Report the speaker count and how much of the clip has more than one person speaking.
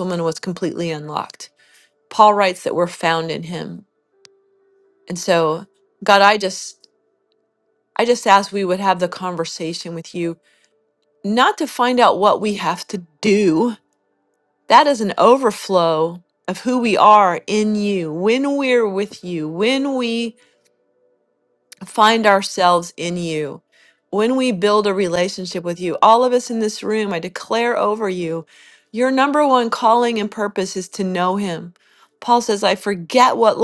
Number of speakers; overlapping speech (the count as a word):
one, no overlap